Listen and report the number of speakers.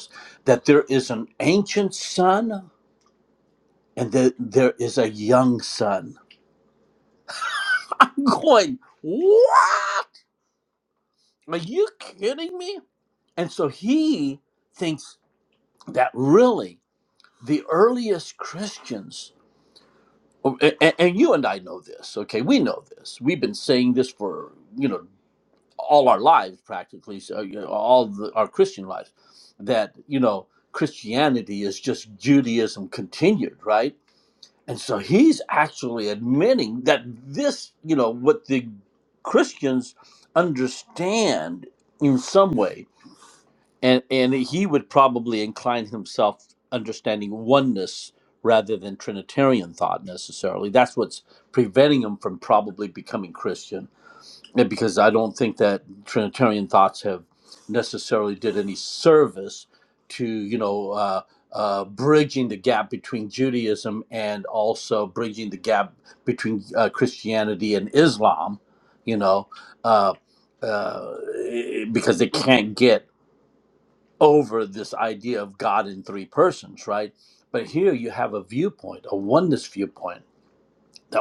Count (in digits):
1